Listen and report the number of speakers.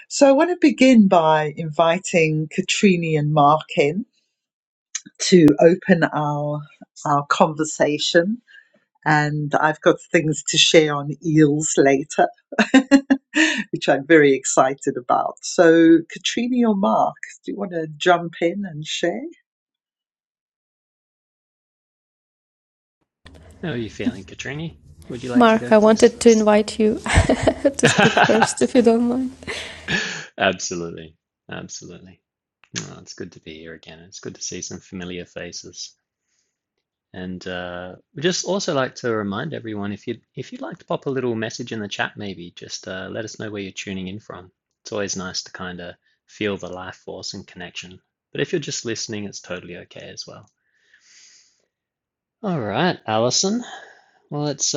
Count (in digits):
3